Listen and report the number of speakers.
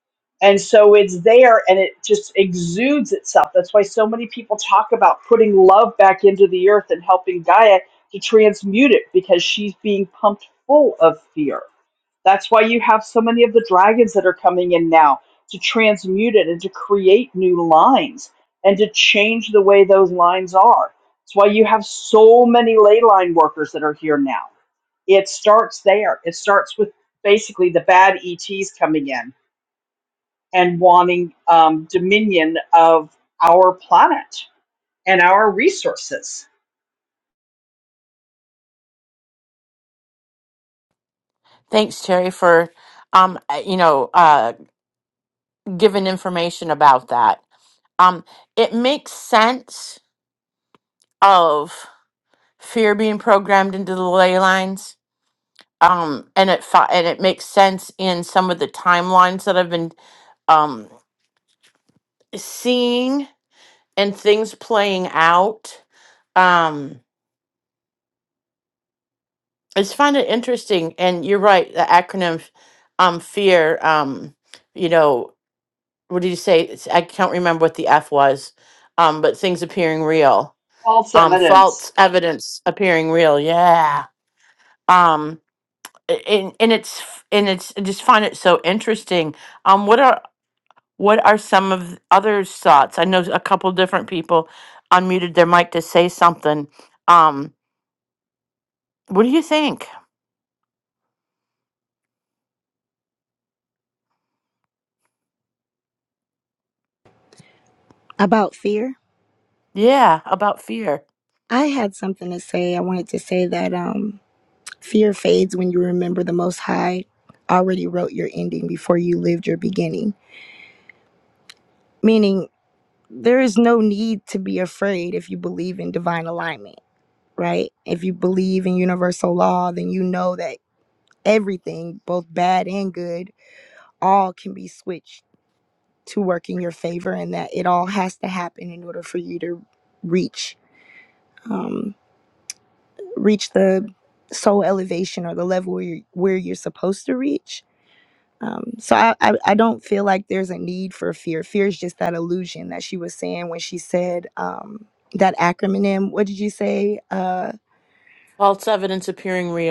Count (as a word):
three